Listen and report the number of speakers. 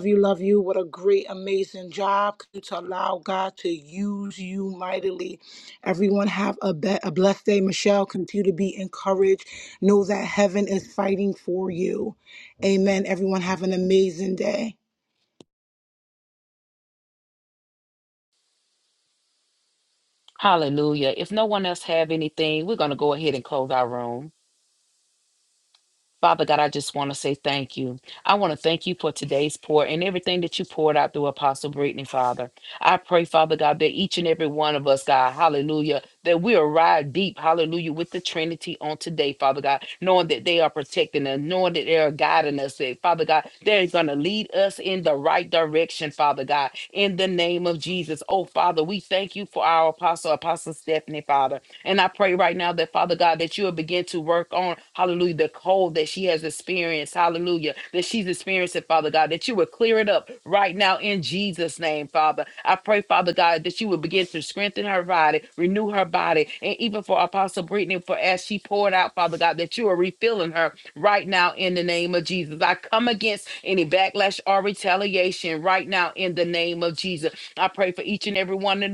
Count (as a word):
two